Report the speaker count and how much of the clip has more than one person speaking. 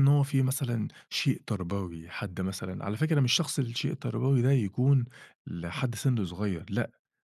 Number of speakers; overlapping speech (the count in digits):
1, no overlap